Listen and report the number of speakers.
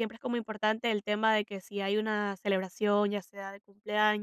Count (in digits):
1